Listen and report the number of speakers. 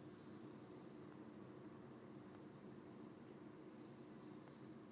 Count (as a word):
zero